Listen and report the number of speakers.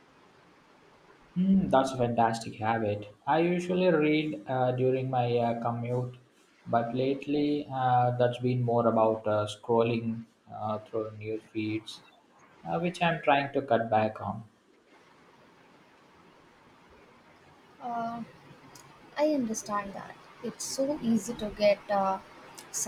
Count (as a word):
two